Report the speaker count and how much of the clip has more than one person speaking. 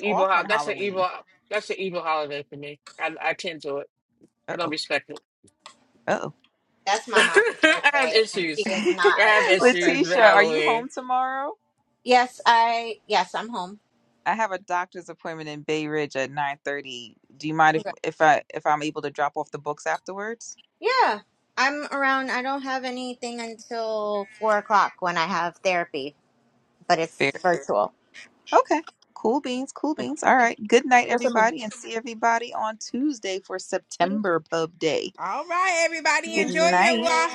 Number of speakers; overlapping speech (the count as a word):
four, about 16%